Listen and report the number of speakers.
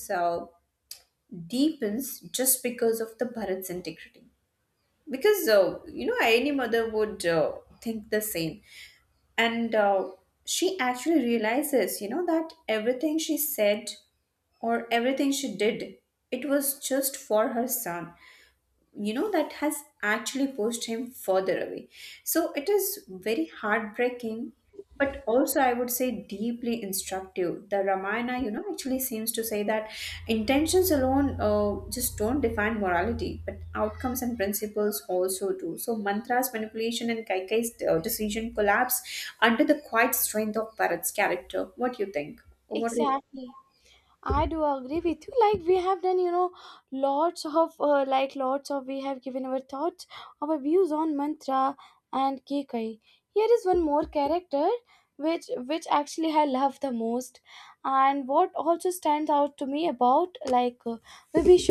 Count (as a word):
two